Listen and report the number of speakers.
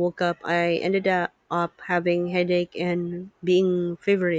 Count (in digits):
1